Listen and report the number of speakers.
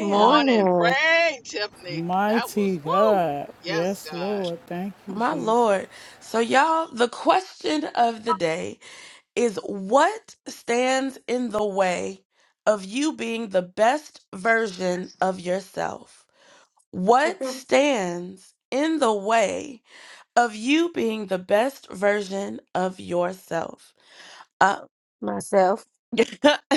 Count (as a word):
four